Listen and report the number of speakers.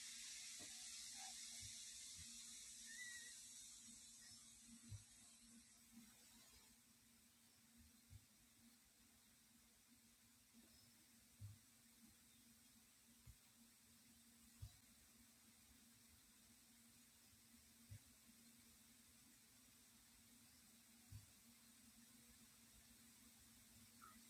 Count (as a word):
zero